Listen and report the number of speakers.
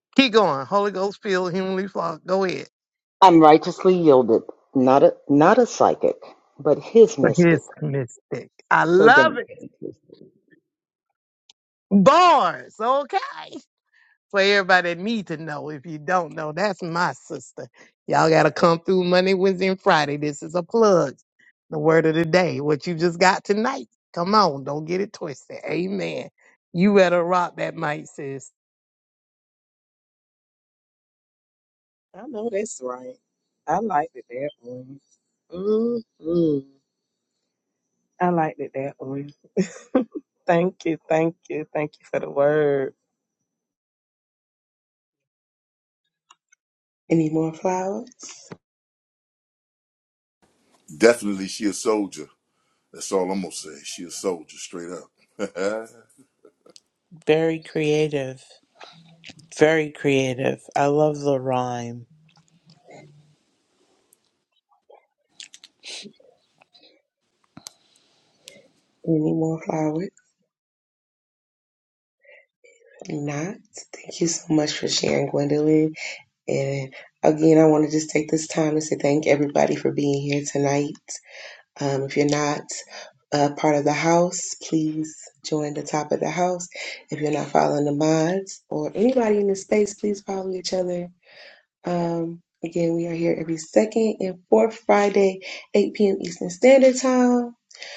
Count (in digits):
6